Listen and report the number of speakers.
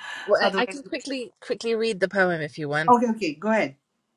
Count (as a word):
two